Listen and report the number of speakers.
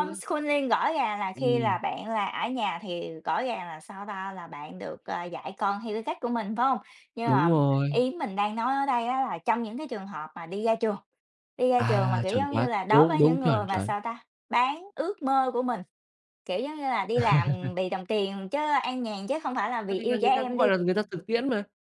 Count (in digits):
2